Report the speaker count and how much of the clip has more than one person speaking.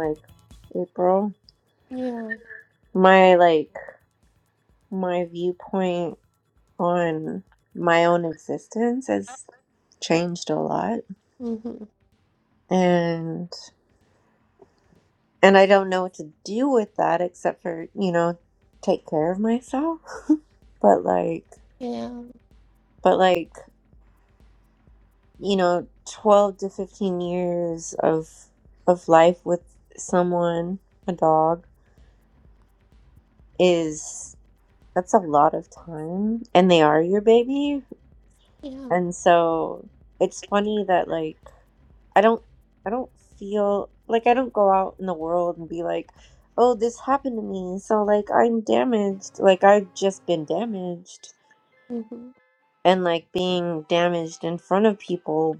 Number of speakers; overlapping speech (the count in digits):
2, under 1%